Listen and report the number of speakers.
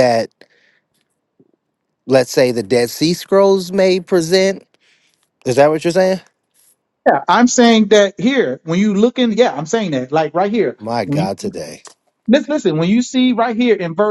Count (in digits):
2